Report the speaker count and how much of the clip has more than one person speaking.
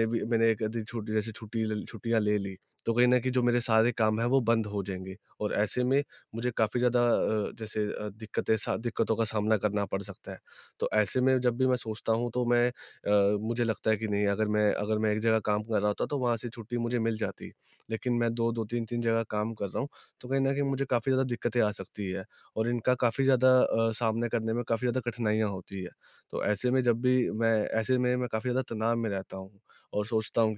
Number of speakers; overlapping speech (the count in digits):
1, no overlap